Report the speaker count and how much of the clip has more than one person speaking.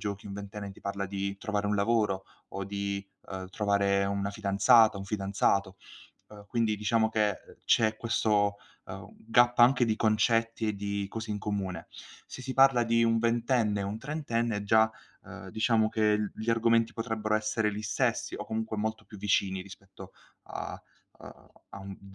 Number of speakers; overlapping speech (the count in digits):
1, no overlap